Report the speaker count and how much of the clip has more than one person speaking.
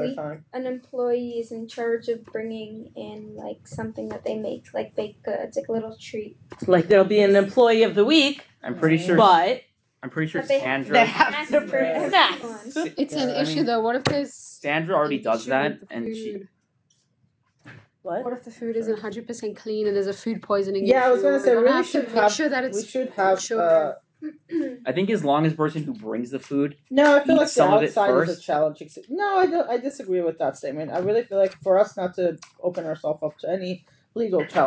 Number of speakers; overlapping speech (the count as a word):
five, about 32%